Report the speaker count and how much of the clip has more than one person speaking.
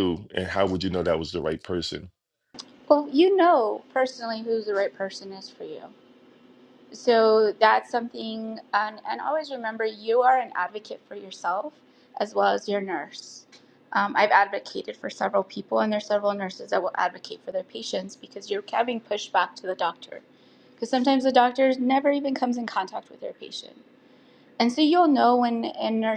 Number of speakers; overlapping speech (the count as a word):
two, no overlap